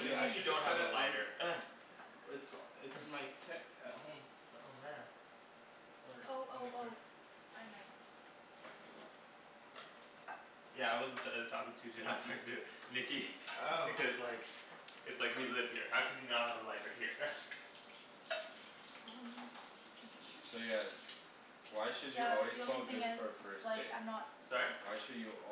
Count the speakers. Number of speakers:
4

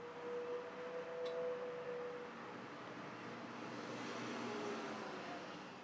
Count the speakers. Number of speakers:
0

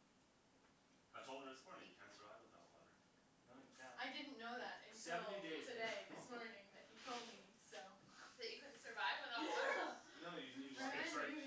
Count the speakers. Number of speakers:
4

